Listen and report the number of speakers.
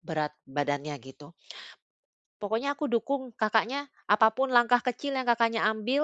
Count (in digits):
1